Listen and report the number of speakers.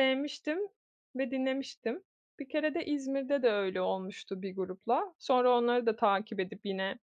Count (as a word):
one